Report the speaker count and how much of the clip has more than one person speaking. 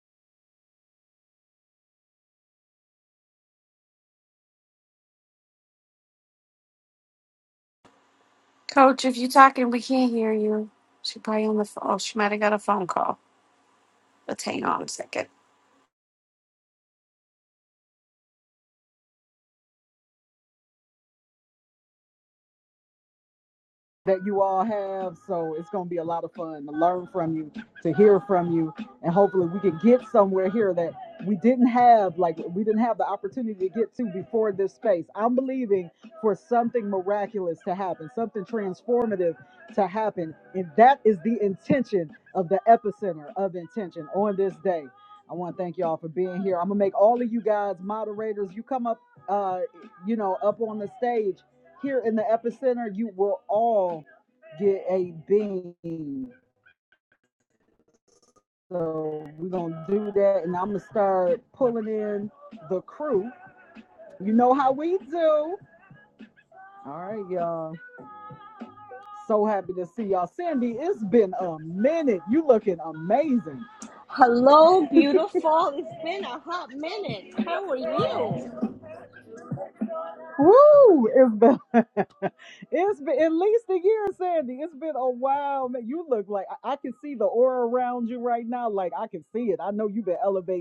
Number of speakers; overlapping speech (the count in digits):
3, no overlap